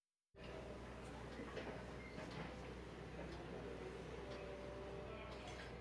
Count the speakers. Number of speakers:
0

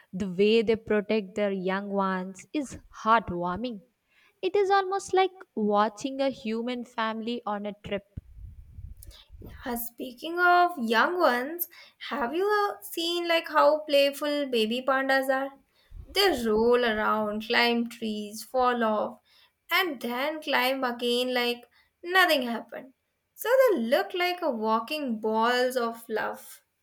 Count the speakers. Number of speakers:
2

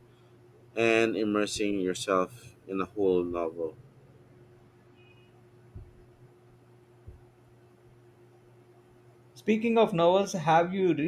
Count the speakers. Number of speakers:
2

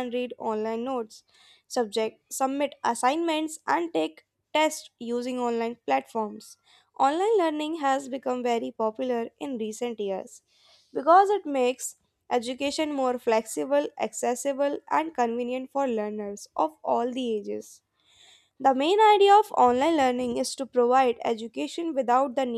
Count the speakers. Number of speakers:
1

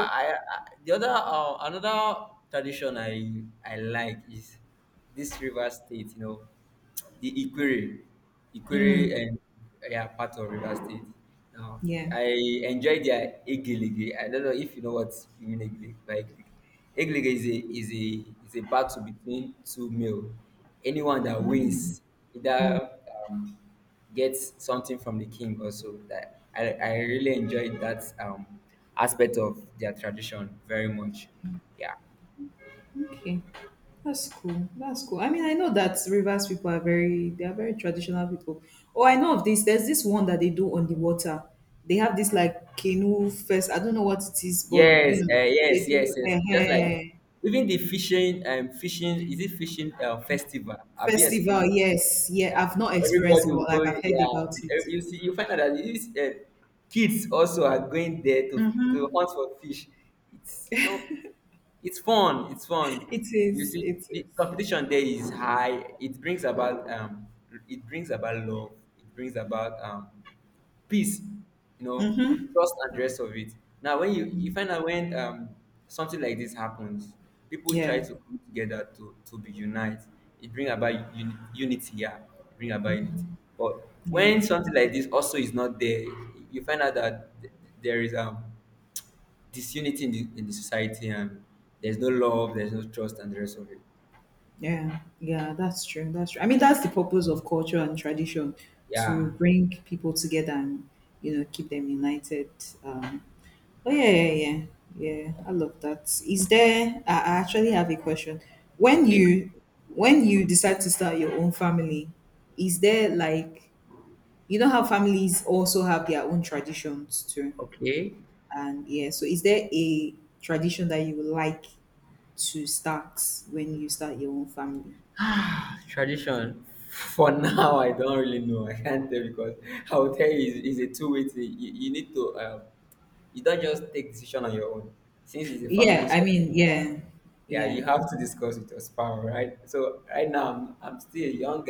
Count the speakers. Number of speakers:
2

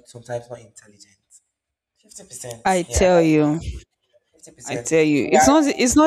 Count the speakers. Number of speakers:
2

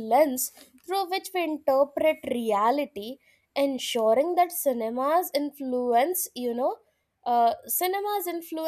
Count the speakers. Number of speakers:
1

